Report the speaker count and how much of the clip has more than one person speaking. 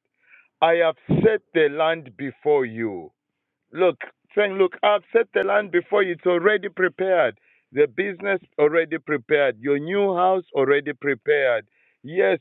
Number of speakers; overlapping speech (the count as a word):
one, no overlap